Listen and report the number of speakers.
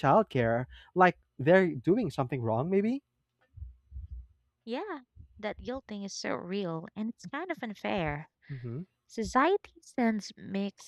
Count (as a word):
two